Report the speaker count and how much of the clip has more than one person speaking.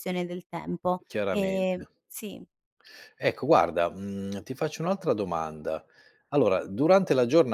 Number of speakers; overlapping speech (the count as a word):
two, about 7%